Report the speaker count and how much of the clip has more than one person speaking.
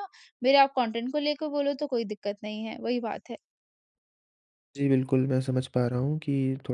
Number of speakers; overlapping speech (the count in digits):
2, no overlap